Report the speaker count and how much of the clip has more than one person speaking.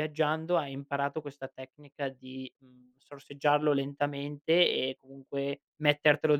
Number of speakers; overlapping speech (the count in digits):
1, no overlap